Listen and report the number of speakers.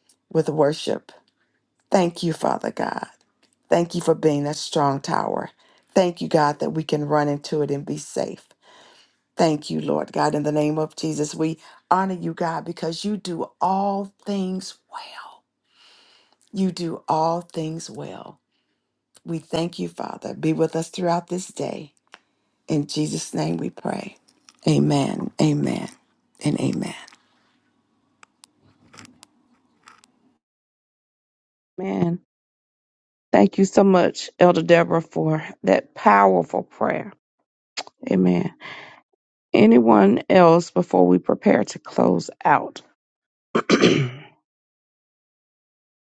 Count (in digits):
2